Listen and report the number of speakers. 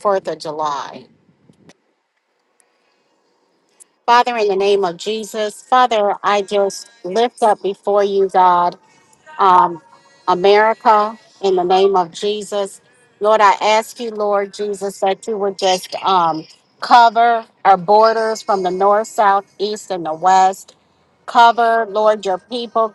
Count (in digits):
1